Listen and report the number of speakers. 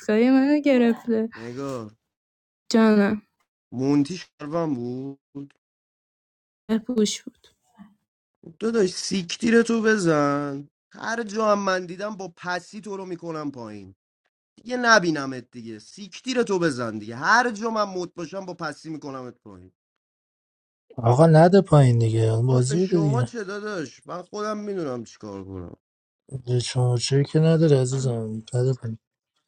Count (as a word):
three